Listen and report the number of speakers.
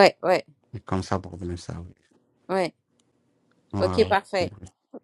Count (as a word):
two